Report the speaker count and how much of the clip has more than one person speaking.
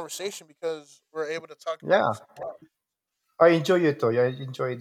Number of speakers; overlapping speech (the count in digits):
2, about 4%